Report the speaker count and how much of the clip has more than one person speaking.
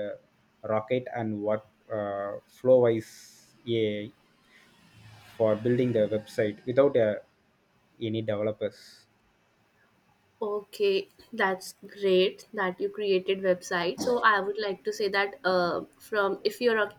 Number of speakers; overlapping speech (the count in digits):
2, no overlap